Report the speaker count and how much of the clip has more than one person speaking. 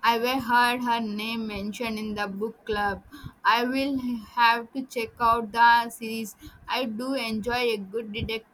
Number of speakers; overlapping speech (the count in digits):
1, no overlap